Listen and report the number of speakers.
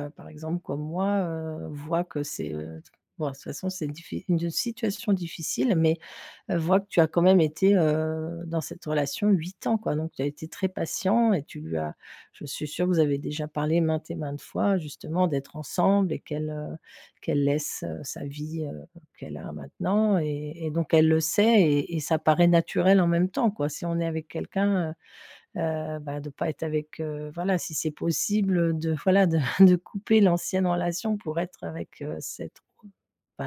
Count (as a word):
one